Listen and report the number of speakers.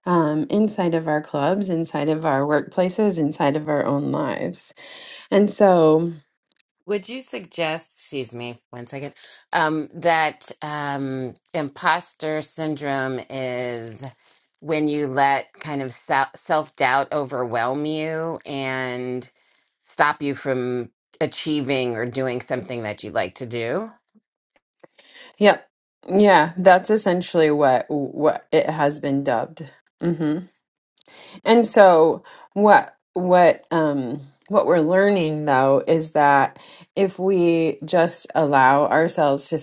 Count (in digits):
2